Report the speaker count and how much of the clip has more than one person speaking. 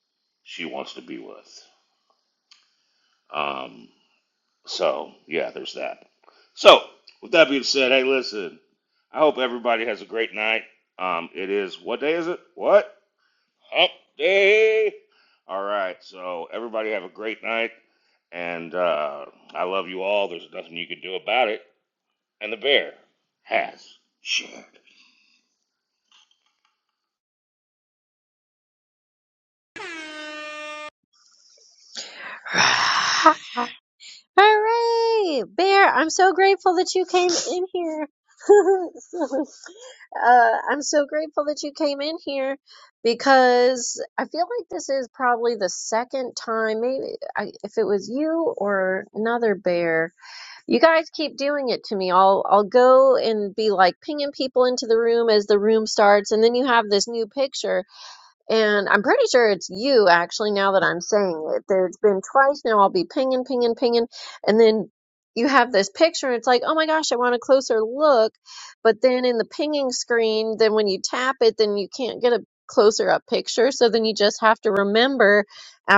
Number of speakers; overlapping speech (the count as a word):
two, no overlap